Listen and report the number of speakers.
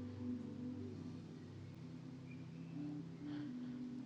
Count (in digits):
0